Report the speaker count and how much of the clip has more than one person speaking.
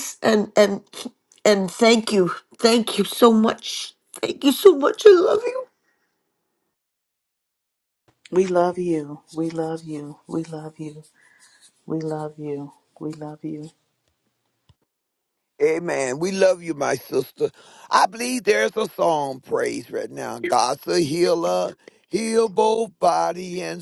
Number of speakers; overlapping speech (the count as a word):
three, no overlap